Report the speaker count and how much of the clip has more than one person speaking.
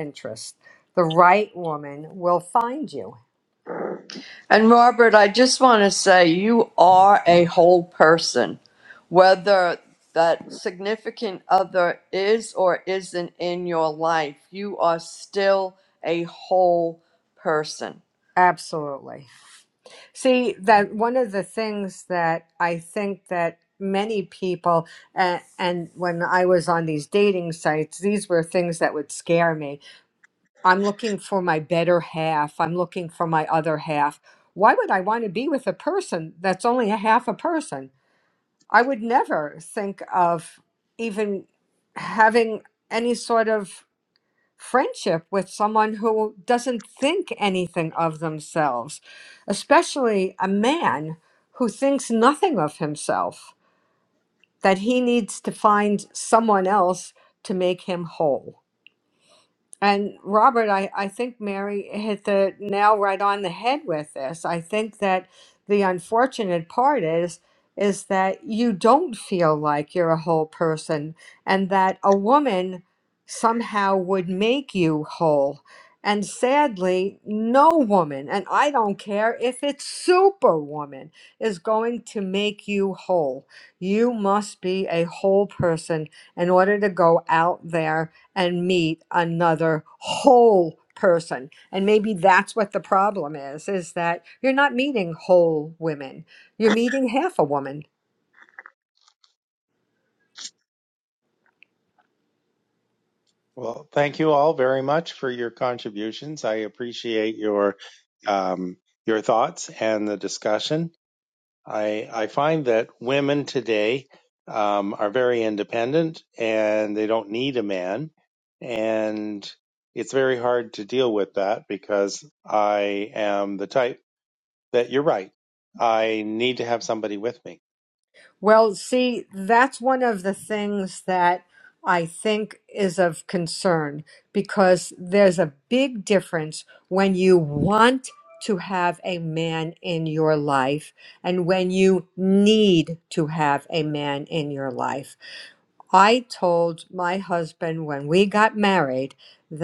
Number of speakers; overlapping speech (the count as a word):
three, no overlap